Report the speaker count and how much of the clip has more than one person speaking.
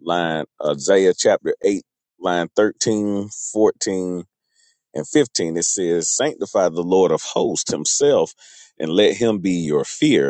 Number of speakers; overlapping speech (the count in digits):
1, no overlap